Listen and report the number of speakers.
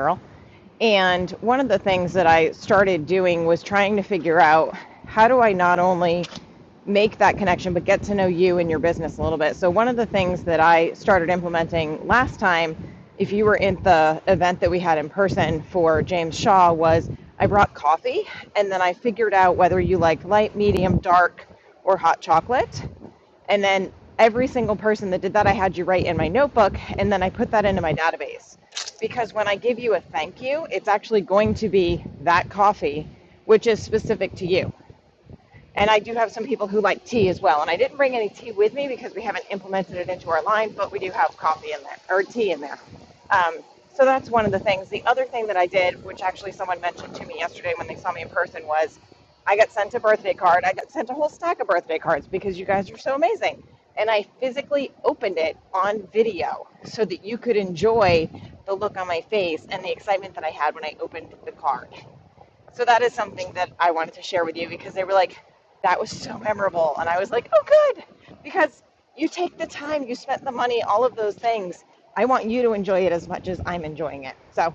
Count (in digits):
1